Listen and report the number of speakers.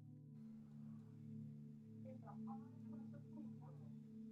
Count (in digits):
0